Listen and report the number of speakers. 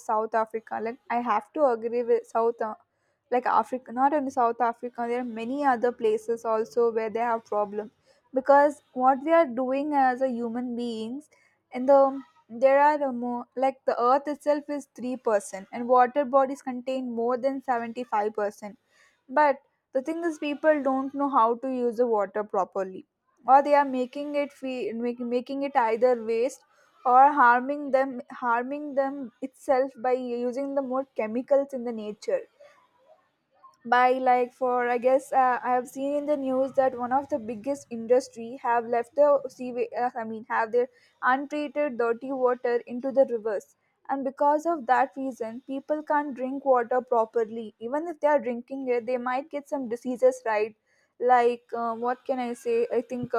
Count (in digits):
1